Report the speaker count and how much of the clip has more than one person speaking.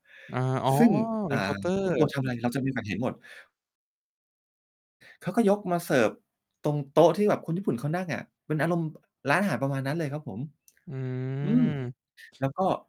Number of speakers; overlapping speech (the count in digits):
2, about 2%